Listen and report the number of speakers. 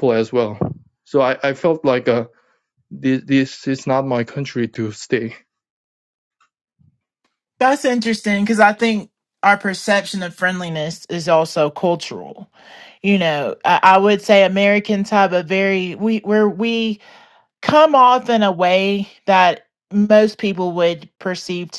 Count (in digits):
2